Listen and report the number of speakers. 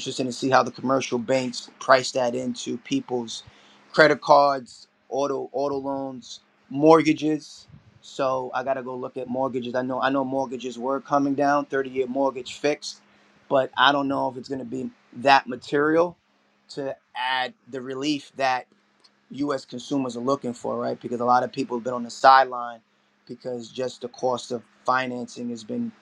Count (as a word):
one